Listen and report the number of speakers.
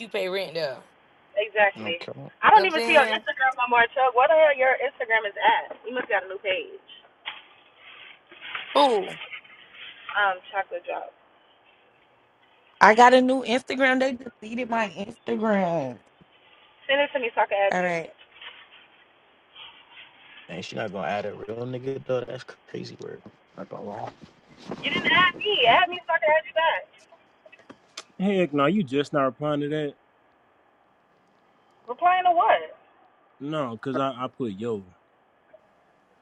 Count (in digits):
5